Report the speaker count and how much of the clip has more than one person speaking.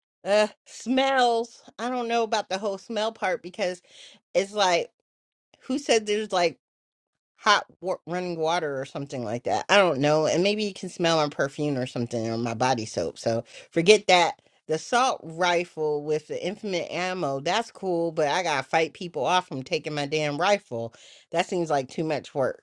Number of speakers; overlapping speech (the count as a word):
one, no overlap